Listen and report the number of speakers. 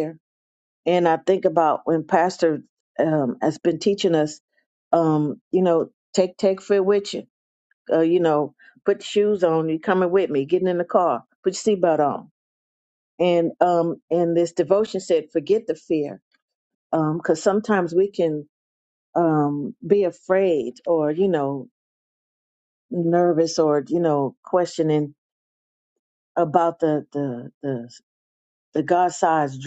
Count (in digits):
1